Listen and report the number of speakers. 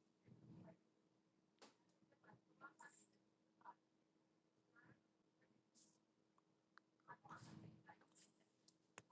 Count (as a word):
zero